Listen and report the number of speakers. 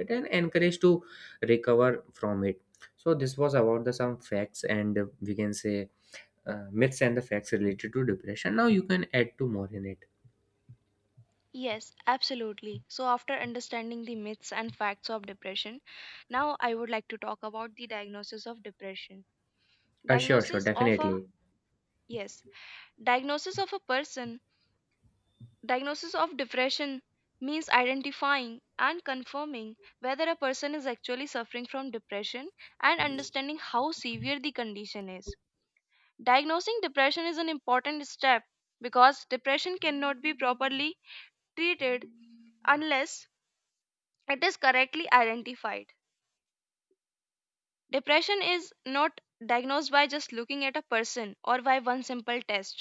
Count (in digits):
2